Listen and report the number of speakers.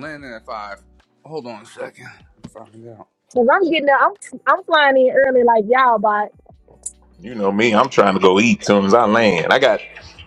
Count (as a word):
three